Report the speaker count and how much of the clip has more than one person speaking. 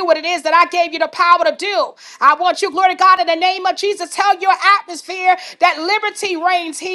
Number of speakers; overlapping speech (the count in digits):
1, no overlap